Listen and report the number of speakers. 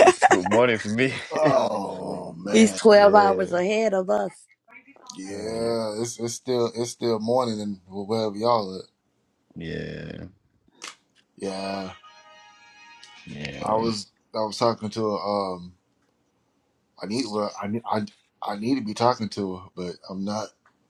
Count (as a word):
three